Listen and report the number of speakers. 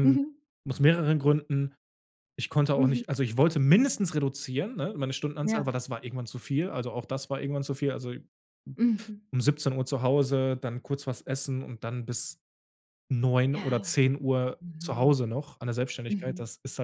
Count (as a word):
two